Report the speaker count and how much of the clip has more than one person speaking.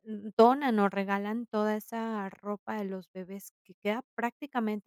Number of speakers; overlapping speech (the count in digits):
1, no overlap